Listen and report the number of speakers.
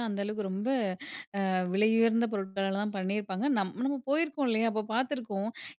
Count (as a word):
one